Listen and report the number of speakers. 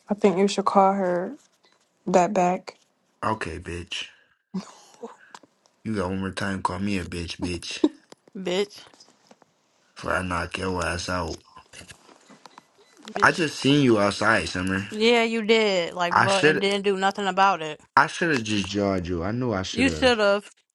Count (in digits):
3